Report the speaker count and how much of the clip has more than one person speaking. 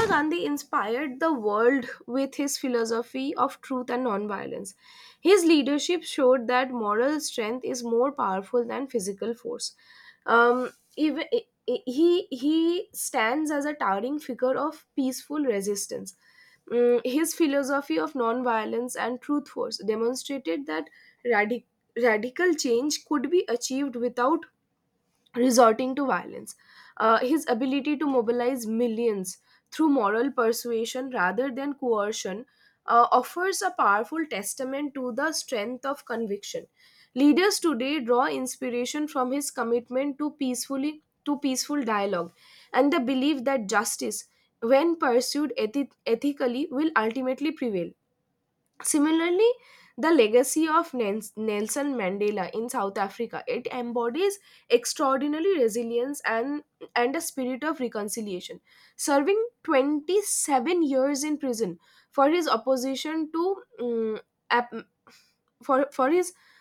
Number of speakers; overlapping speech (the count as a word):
one, no overlap